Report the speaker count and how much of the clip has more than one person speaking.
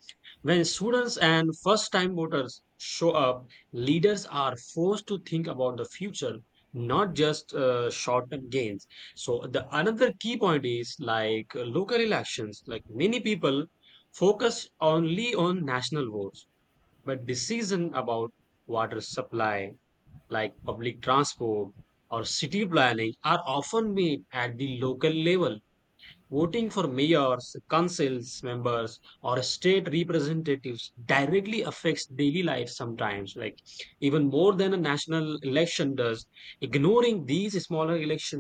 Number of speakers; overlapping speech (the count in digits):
1, no overlap